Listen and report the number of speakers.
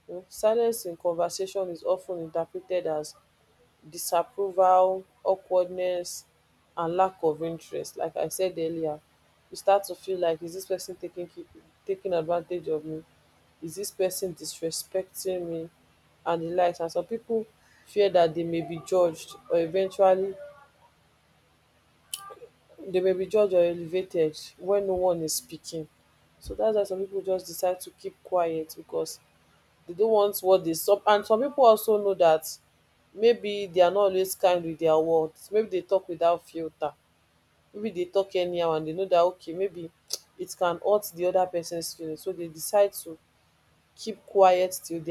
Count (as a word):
one